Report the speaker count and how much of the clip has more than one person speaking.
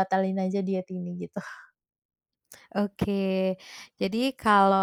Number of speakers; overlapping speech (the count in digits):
2, no overlap